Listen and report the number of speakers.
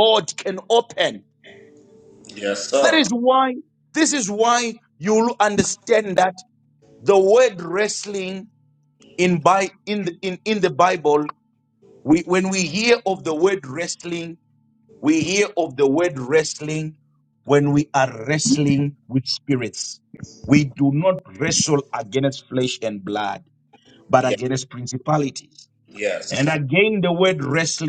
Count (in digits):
2